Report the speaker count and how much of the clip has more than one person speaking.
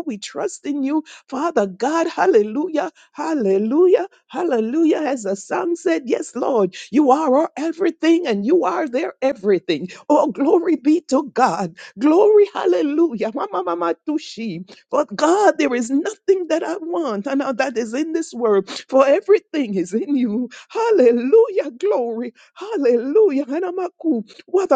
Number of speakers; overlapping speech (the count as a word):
one, no overlap